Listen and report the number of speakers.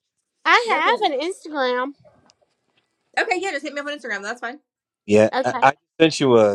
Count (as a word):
three